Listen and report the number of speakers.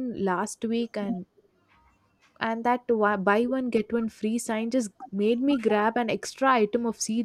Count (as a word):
one